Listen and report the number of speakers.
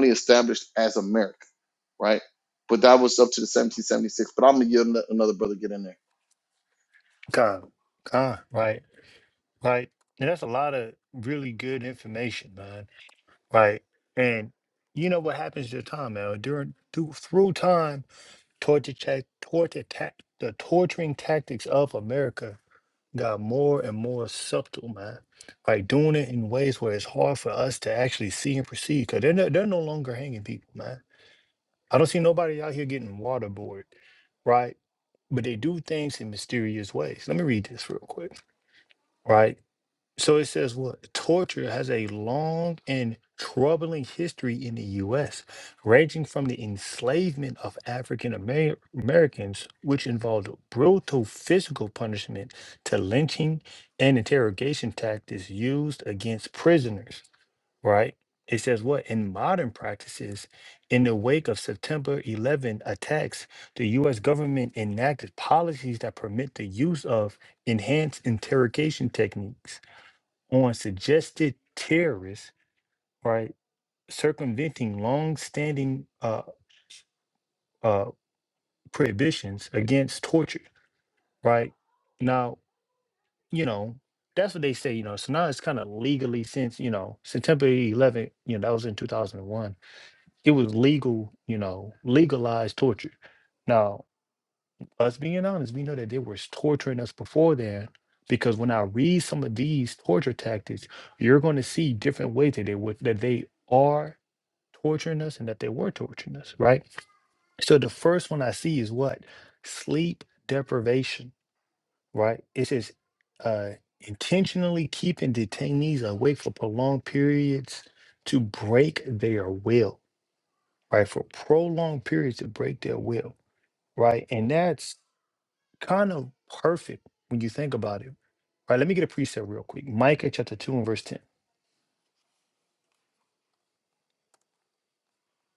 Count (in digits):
2